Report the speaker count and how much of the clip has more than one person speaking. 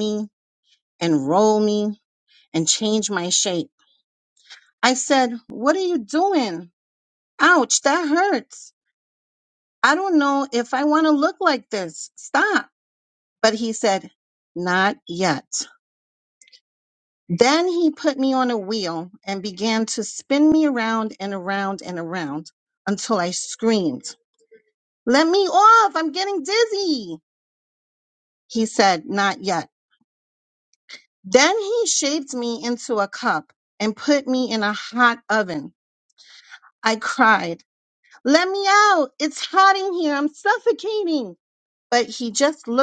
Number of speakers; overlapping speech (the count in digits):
1, no overlap